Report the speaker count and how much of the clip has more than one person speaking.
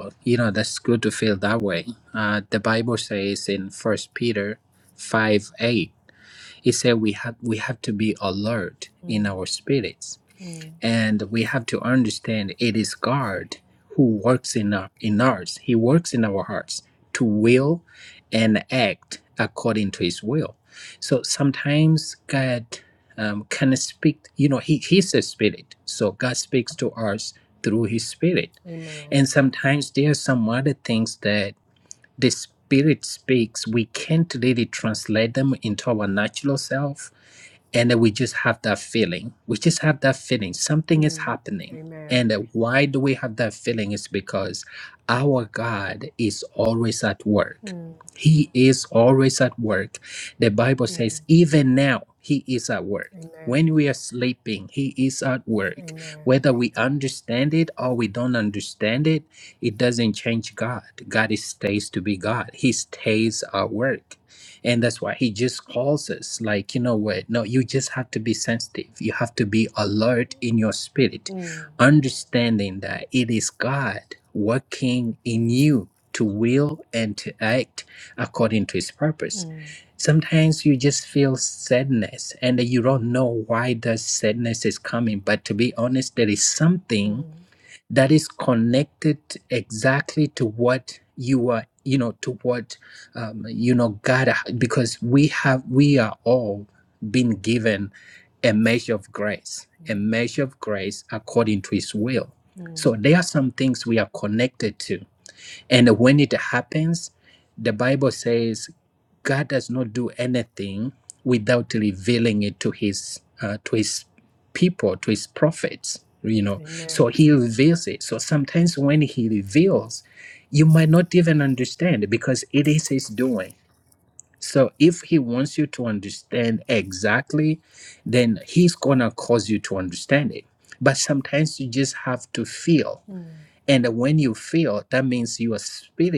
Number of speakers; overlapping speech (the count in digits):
2, about 2%